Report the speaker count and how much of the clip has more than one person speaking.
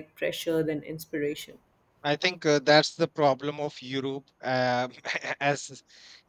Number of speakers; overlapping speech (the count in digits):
2, no overlap